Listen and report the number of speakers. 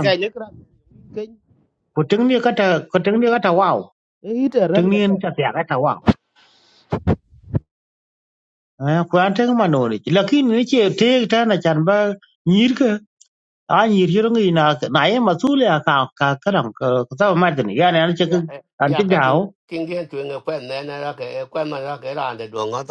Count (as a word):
three